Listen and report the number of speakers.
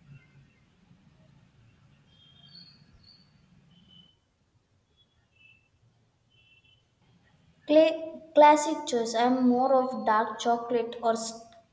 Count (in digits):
1